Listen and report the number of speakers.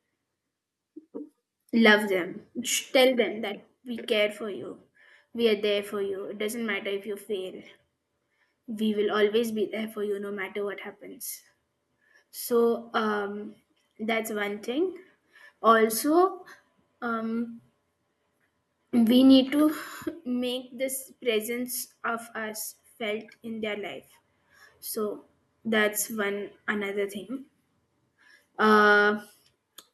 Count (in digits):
1